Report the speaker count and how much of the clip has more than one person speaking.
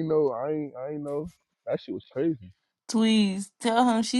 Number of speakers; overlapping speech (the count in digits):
2, no overlap